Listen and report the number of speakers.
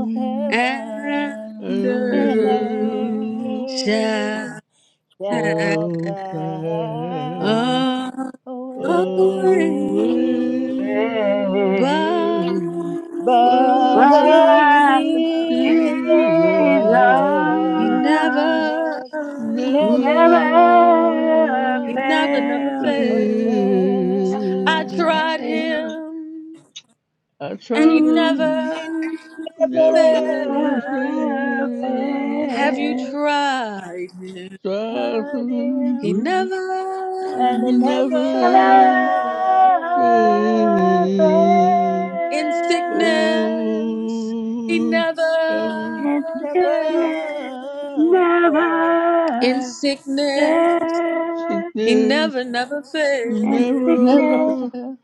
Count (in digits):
4